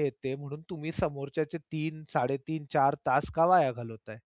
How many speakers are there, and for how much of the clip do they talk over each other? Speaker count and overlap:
1, no overlap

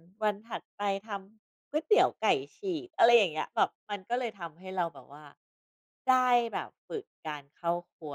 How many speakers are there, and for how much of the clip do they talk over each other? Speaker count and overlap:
1, no overlap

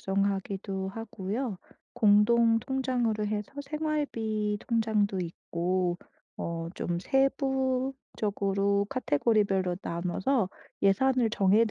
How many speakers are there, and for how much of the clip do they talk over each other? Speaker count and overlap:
1, no overlap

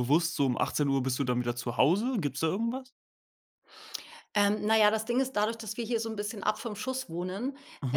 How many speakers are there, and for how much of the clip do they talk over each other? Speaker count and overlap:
2, about 1%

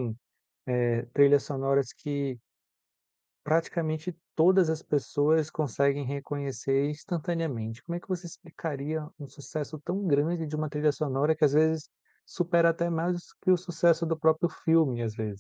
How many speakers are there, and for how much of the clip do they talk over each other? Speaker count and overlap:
1, no overlap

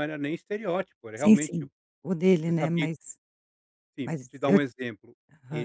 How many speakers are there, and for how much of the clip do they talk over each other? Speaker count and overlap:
2, about 27%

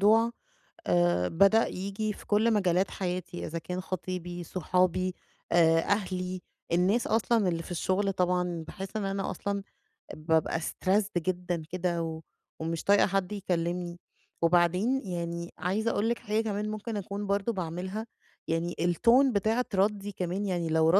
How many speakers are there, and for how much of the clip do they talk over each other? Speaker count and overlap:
1, no overlap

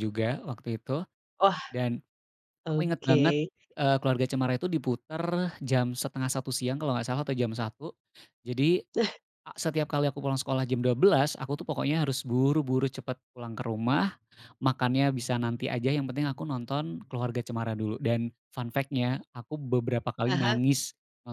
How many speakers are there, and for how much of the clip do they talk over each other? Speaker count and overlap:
2, about 5%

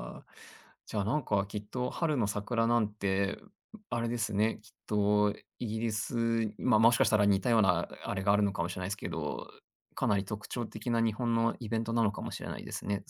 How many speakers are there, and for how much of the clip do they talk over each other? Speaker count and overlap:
1, no overlap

